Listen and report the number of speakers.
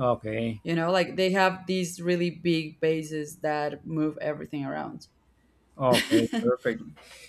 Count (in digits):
2